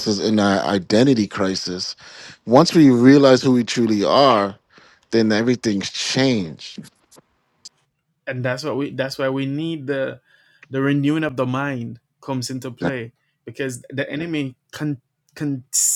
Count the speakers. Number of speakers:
2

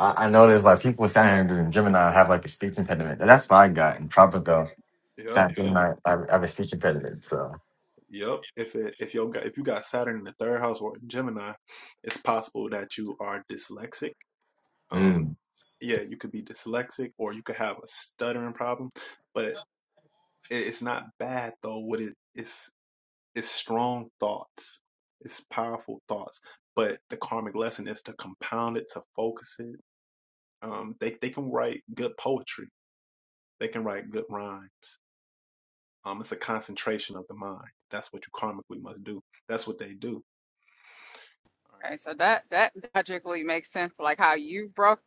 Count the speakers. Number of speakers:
3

